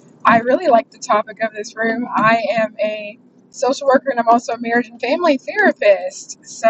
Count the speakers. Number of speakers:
one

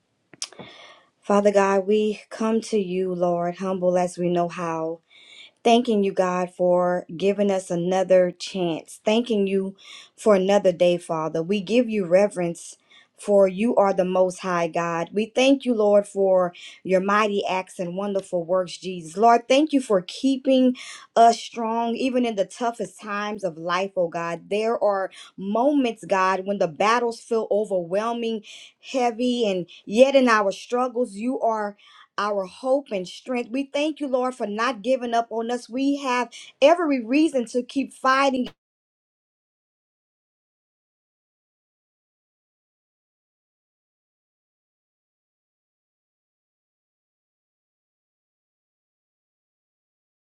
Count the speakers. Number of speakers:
one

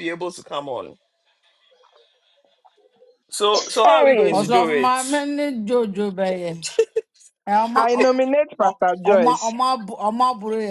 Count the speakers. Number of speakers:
three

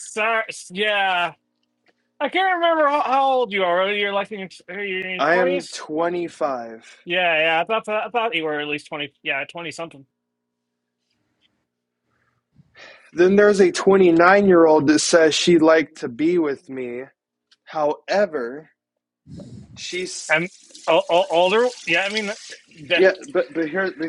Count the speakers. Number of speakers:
two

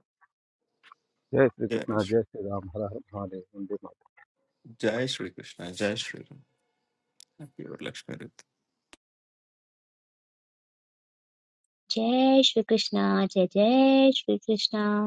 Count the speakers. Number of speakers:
three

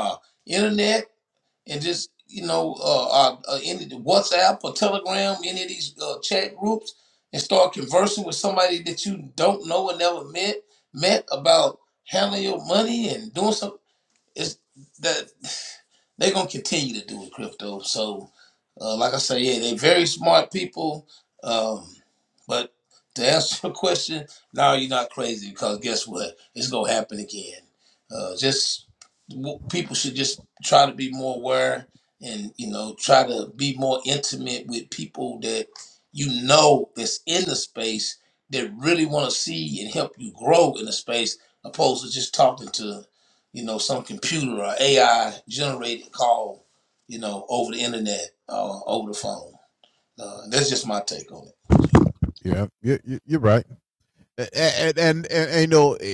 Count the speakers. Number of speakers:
two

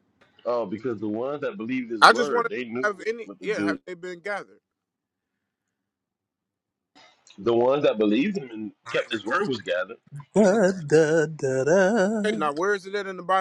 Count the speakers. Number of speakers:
three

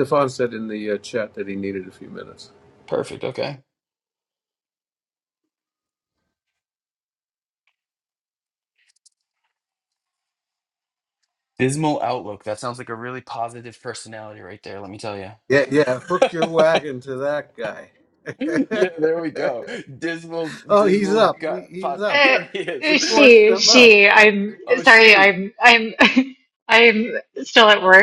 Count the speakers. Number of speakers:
three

